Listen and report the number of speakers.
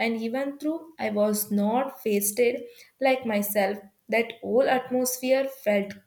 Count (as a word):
one